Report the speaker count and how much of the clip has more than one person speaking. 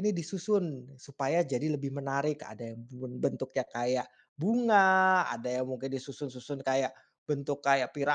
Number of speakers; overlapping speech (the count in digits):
1, no overlap